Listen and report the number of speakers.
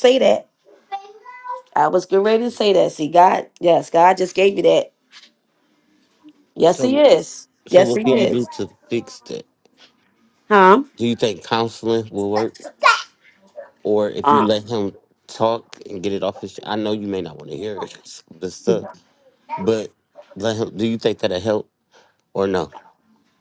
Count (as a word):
two